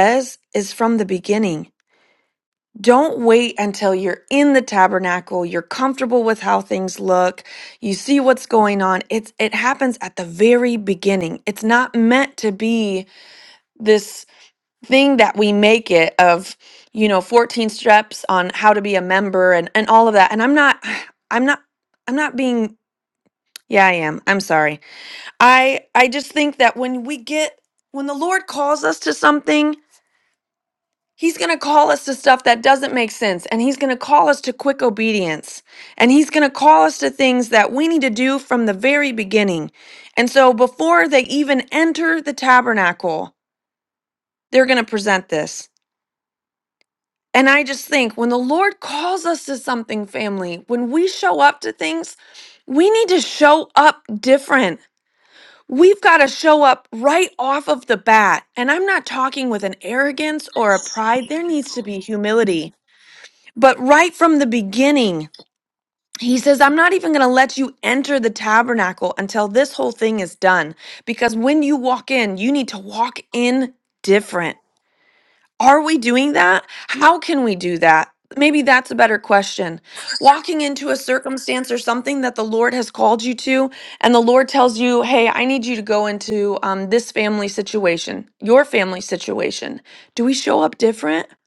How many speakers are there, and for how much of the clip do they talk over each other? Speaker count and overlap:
one, no overlap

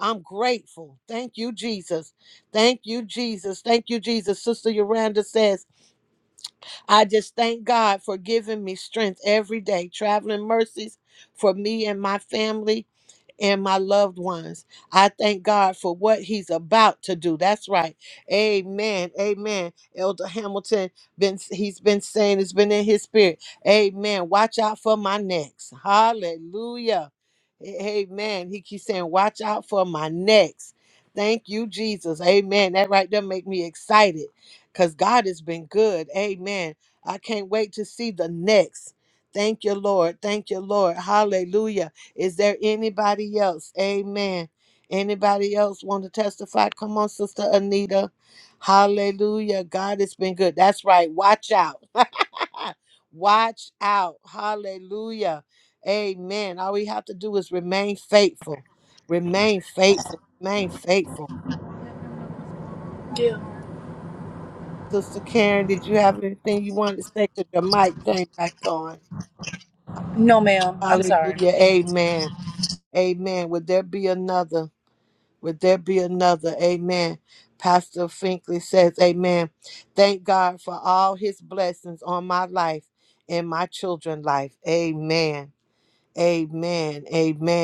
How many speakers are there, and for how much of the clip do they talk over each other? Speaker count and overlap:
two, about 1%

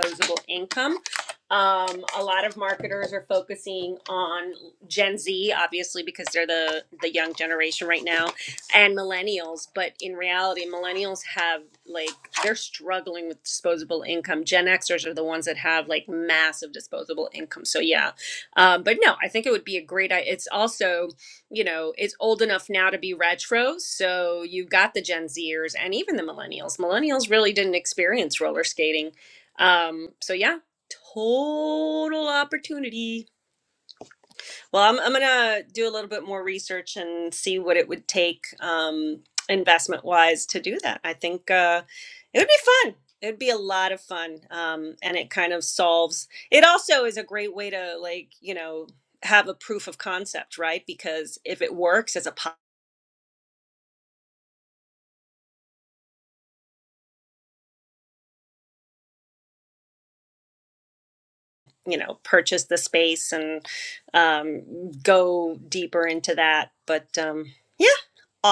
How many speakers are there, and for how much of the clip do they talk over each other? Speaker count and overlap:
one, no overlap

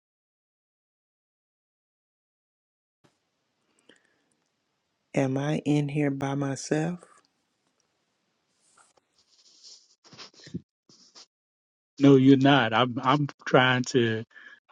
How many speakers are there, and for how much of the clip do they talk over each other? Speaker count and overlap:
two, no overlap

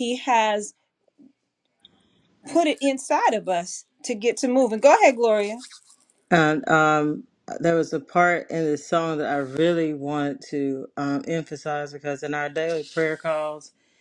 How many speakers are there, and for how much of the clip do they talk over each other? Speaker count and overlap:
two, no overlap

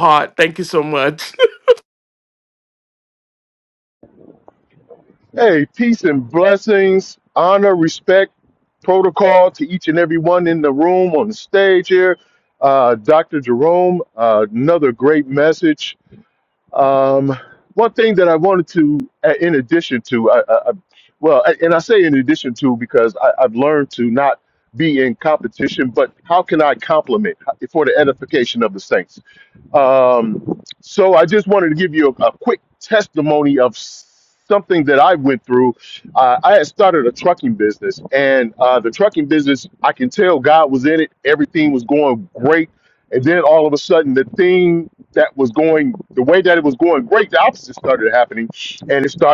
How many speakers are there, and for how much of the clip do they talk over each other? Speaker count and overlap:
two, no overlap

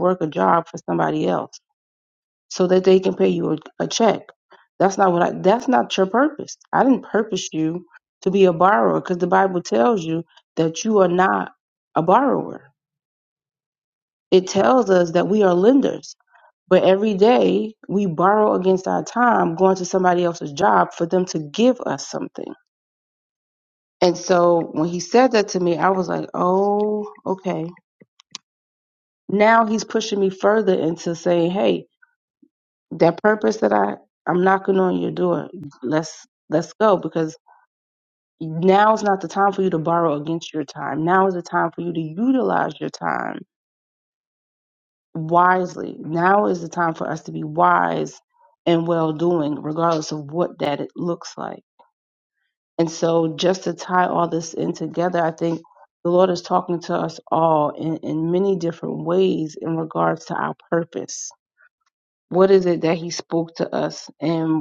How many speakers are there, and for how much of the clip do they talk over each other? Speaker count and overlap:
one, no overlap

